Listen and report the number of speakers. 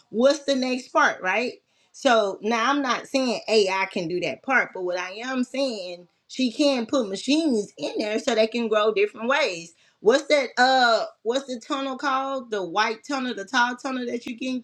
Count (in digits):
1